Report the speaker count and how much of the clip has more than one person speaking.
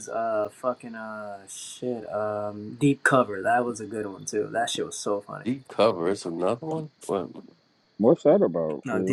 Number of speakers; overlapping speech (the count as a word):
three, about 3%